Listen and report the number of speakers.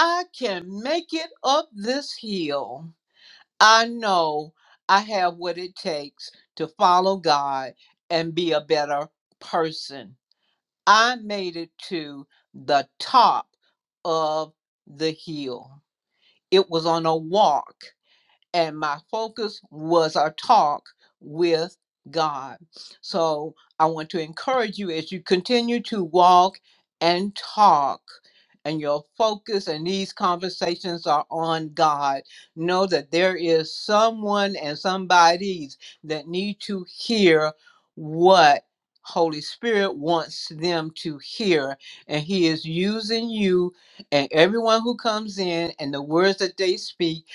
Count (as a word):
one